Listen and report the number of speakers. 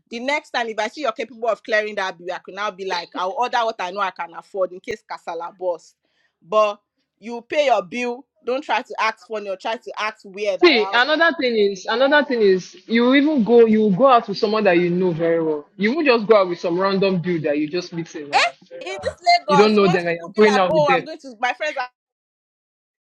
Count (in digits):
2